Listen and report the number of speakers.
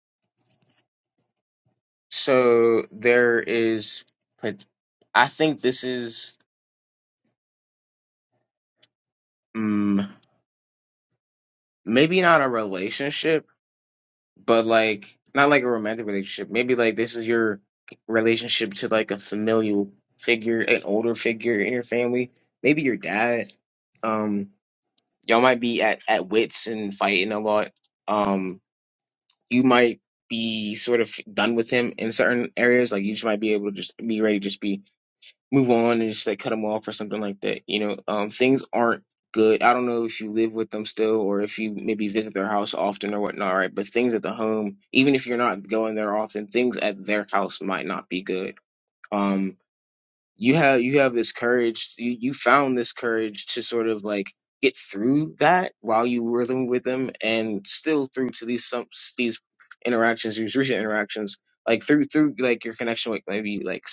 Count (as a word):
one